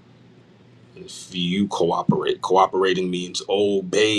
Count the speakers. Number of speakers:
1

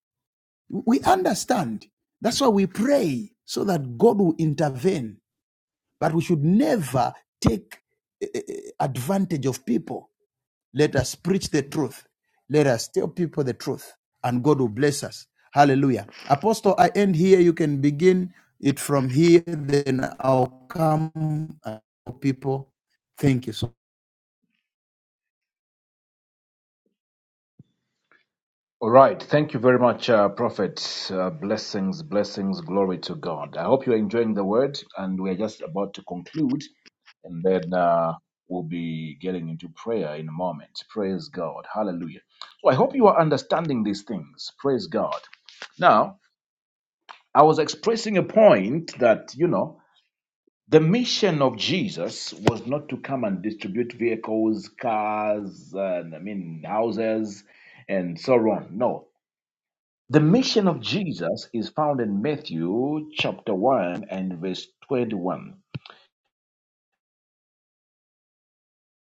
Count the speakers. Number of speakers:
2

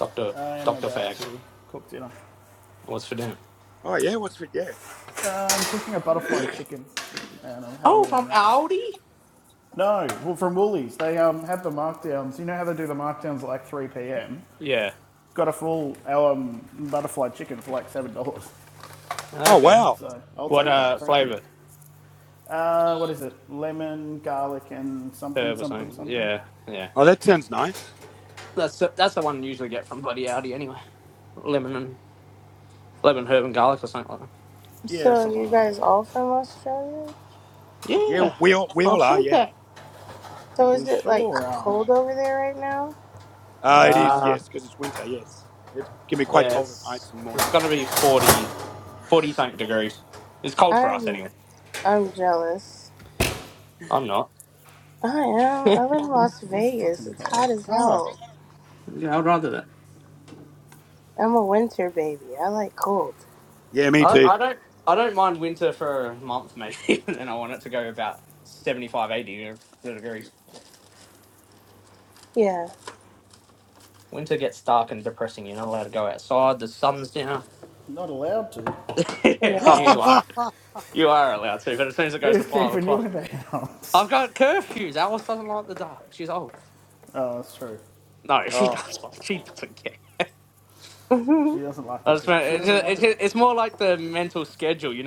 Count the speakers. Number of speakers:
4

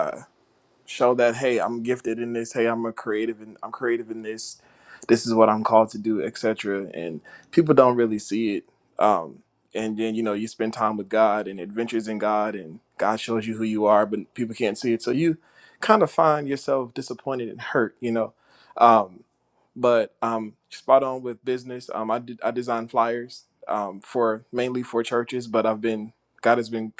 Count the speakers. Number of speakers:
1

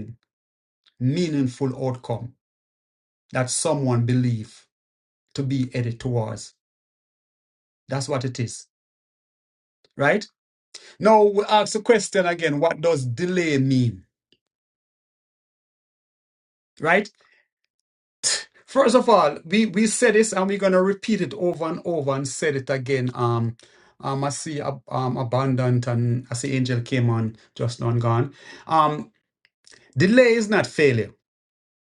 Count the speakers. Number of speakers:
1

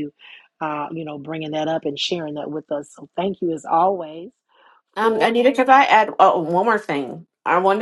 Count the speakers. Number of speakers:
2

